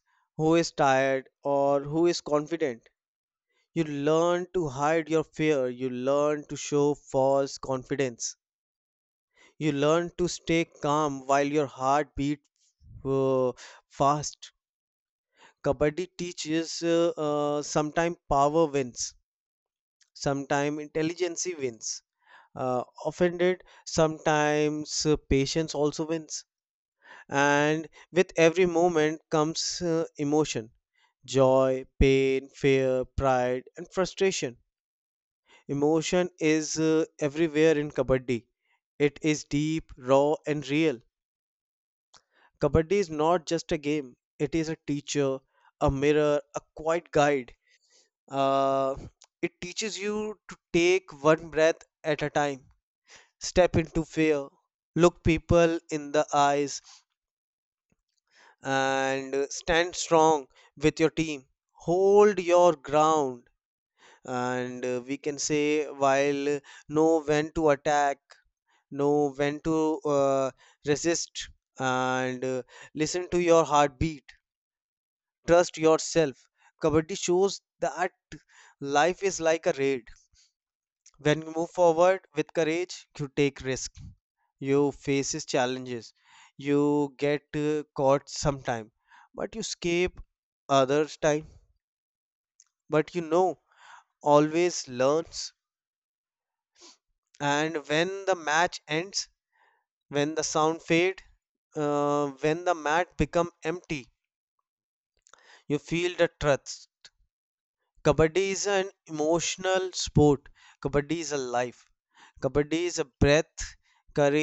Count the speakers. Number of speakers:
1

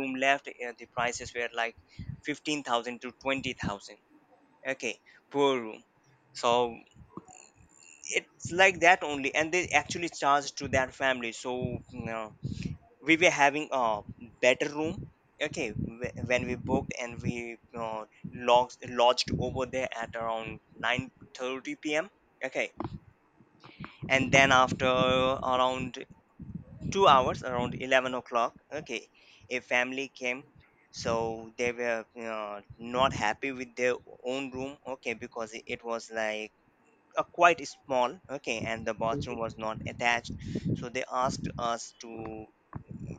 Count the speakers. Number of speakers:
1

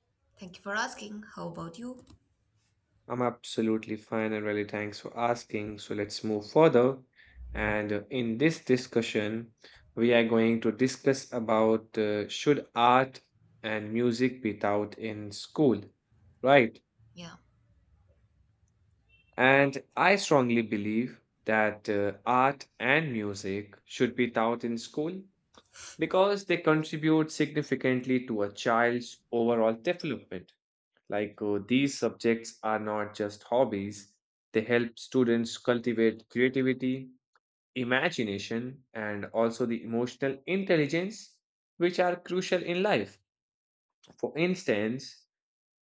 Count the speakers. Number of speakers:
2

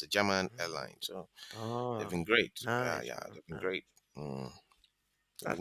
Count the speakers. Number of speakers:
2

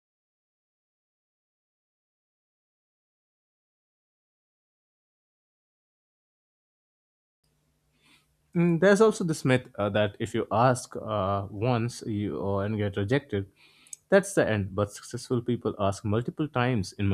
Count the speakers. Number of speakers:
1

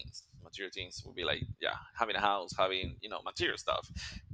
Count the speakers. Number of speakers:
1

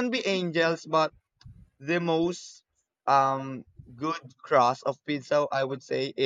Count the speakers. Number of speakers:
1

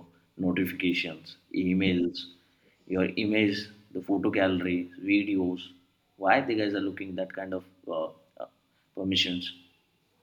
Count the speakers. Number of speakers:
1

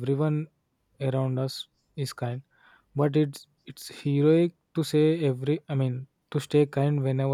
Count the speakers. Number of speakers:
1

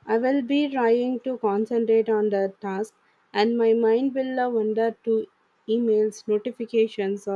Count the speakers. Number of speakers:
1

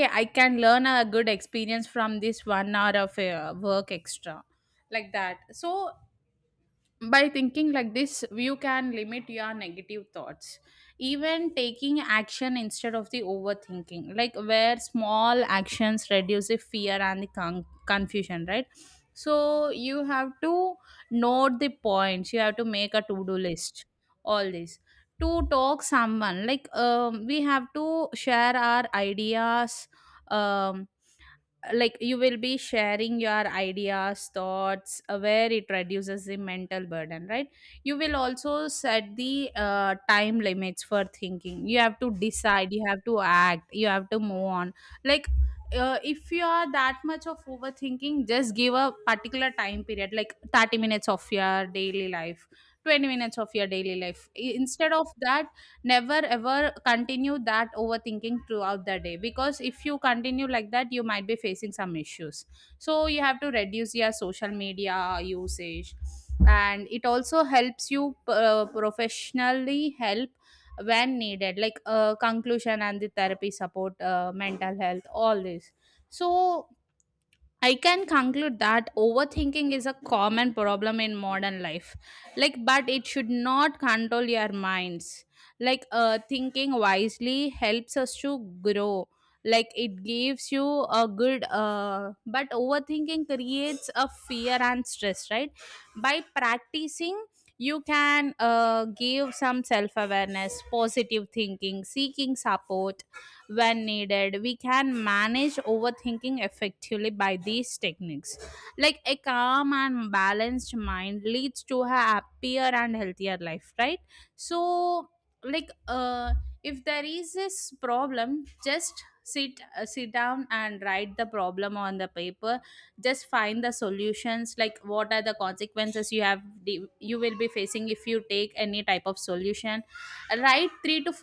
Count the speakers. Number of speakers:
1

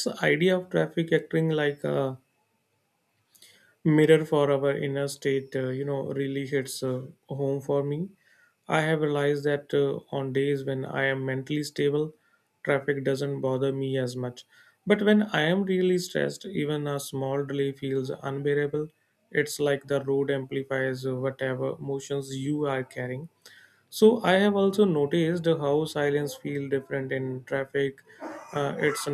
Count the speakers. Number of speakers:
1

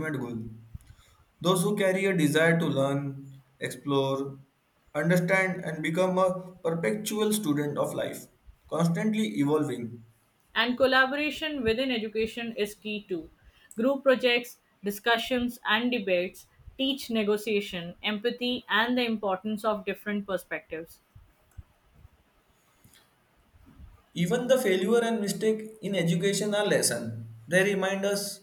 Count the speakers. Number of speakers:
2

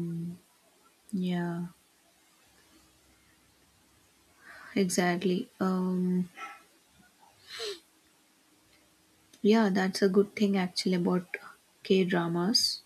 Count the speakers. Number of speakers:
1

